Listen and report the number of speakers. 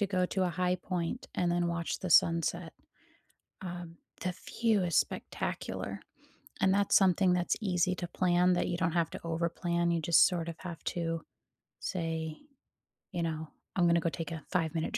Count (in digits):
1